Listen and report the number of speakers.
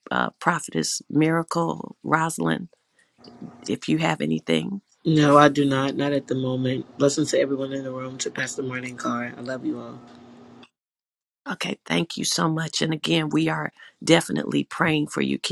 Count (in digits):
2